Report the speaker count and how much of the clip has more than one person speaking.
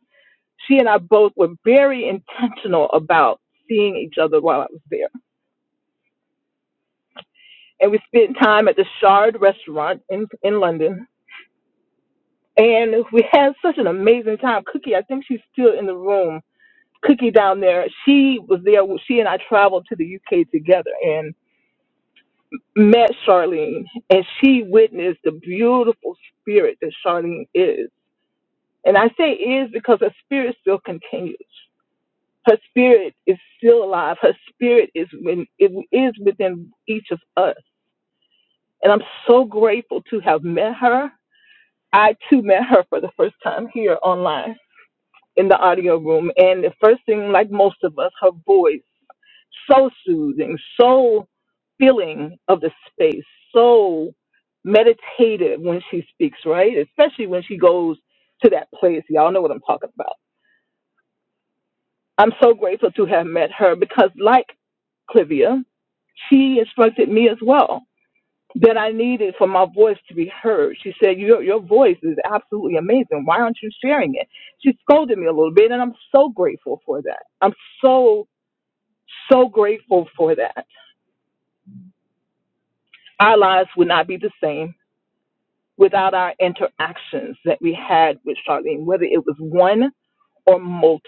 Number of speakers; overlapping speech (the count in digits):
1, no overlap